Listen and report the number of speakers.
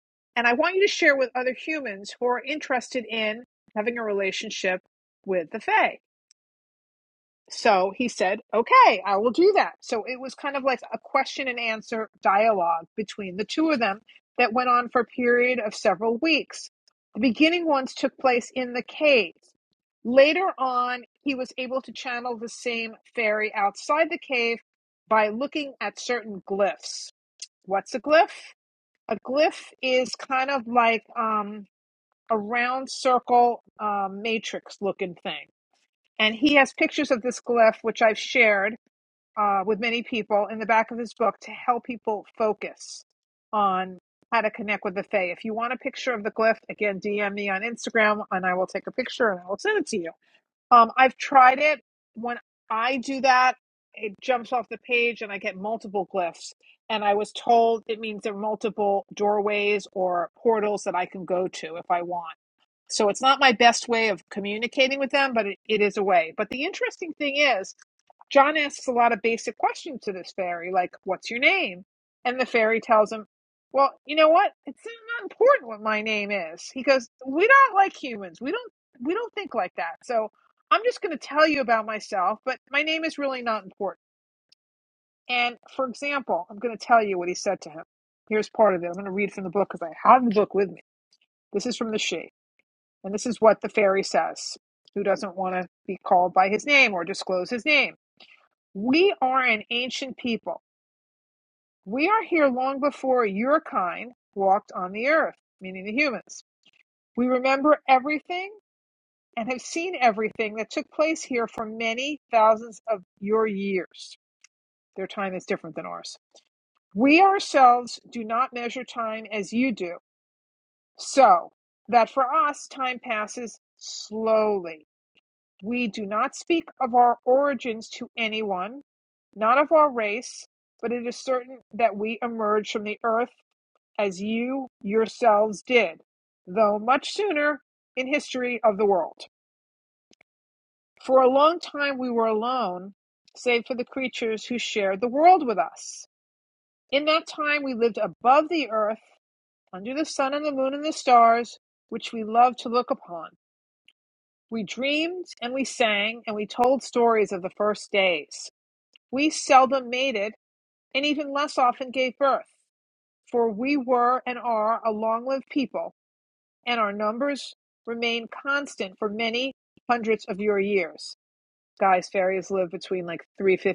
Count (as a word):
one